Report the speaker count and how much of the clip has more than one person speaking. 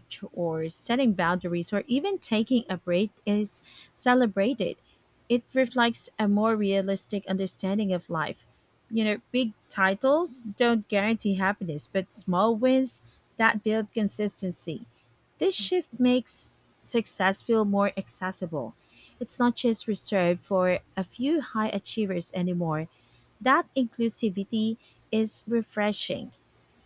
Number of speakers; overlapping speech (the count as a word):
one, no overlap